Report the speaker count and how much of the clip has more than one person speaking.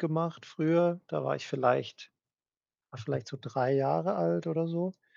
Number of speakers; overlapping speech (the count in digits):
1, no overlap